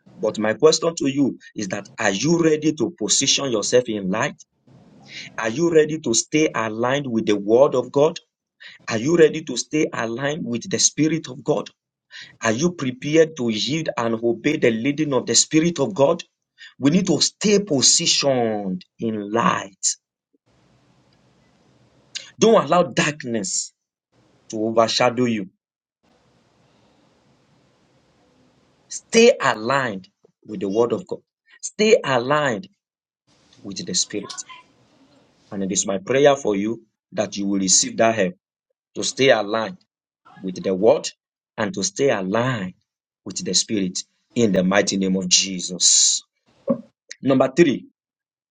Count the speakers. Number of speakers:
1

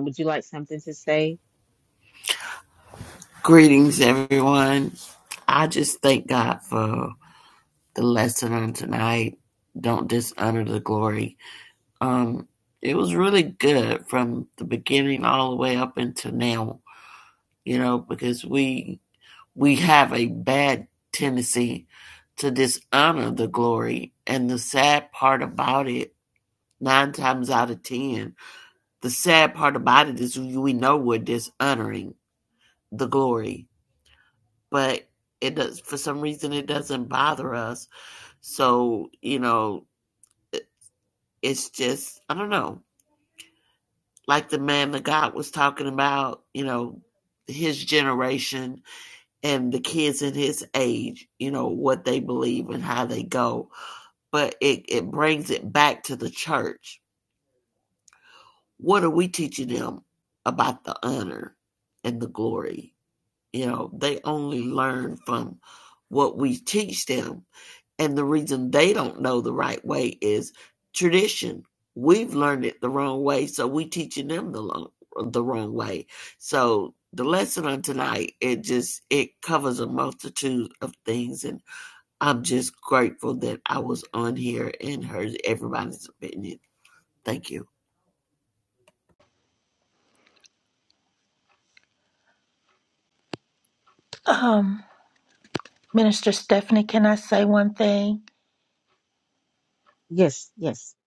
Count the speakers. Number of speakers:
3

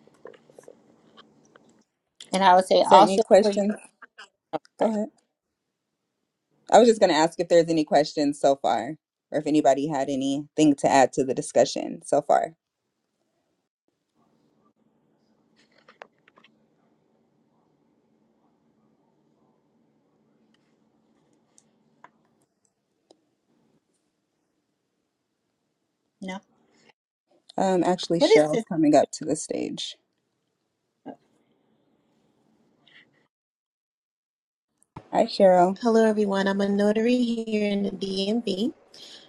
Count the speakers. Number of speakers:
3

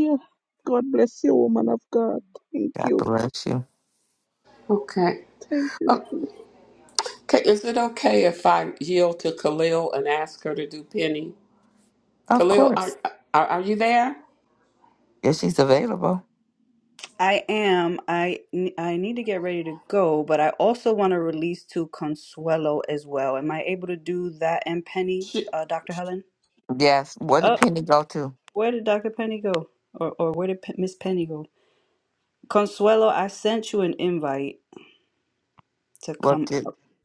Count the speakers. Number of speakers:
4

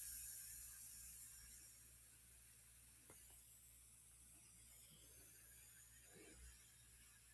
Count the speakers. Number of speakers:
0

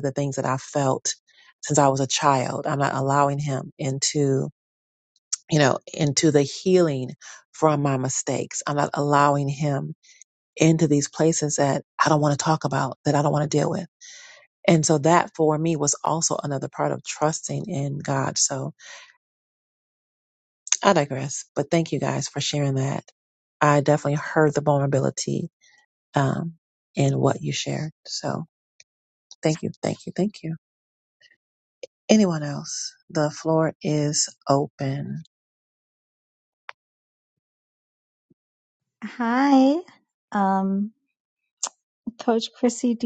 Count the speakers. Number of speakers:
2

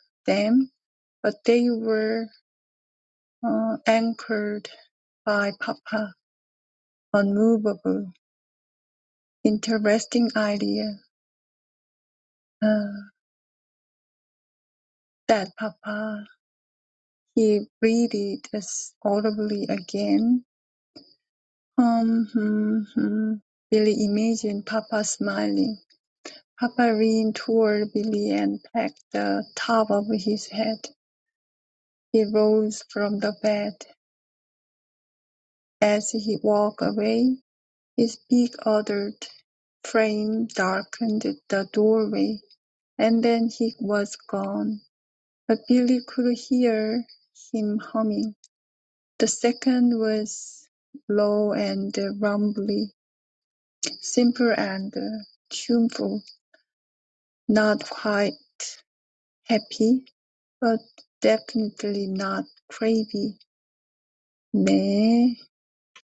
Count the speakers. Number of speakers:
1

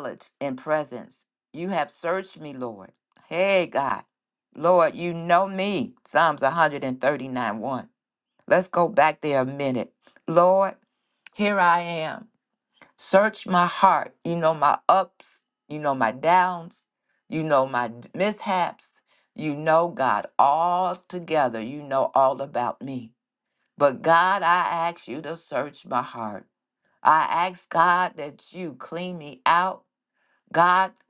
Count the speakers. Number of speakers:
1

